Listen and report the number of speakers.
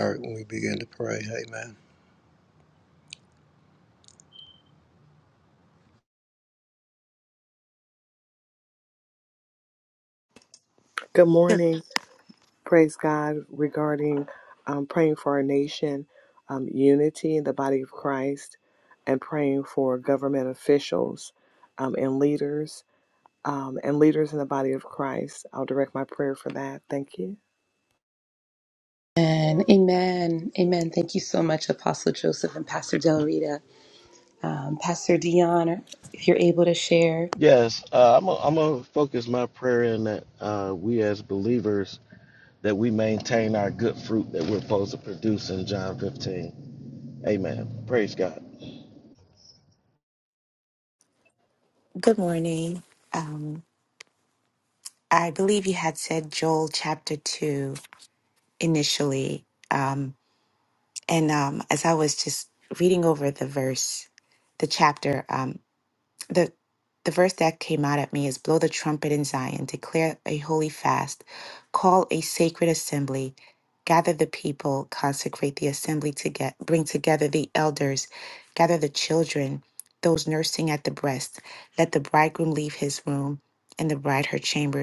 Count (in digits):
5